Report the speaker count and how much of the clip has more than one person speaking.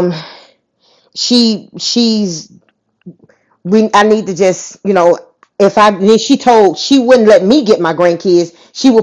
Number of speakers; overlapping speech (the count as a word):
one, no overlap